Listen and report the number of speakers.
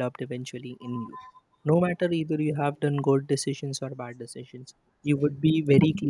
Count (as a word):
one